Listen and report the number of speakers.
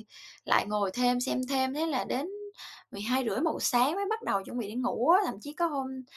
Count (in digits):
1